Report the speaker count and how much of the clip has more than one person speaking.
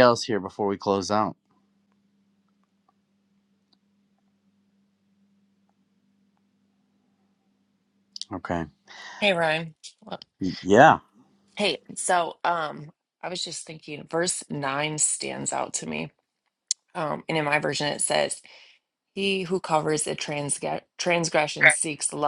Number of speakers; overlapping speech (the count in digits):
2, no overlap